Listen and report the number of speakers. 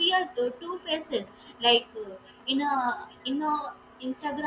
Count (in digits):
1